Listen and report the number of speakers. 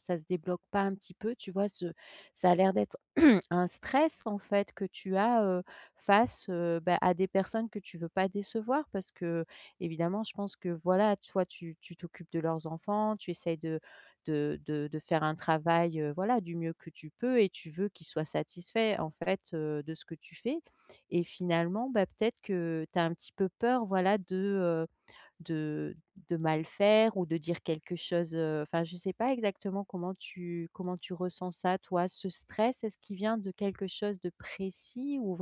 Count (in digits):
1